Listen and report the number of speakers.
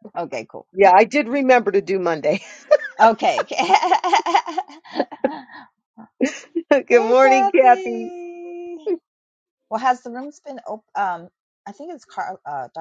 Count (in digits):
2